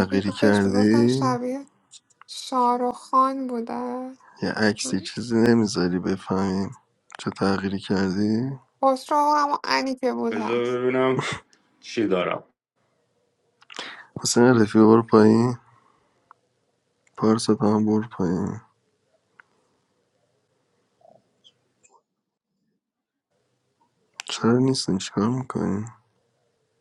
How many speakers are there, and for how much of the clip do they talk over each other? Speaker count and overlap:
three, about 6%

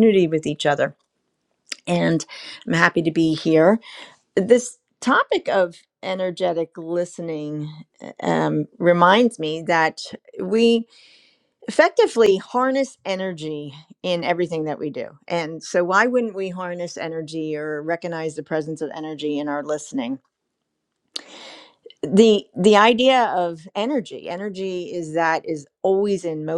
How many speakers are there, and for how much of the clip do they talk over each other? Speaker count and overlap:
one, no overlap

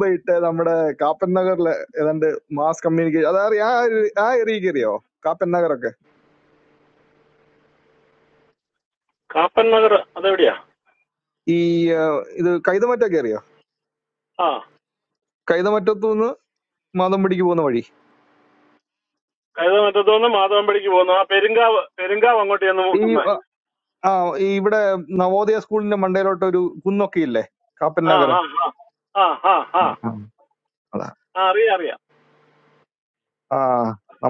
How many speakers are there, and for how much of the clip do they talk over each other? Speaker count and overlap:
two, about 1%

